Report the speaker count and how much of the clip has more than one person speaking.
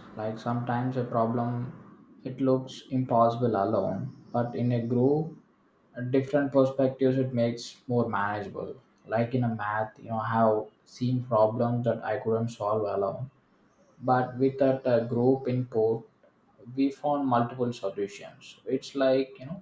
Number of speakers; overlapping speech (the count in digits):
1, no overlap